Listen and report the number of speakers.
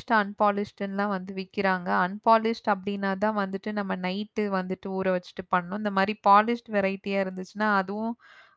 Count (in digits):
1